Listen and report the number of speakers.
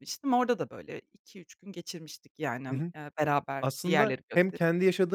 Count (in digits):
2